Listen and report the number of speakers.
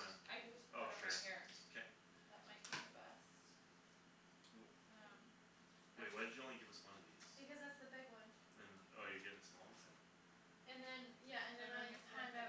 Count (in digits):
3